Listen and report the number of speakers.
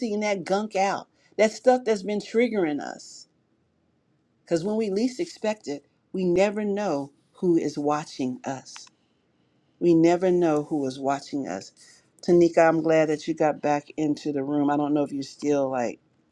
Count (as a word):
one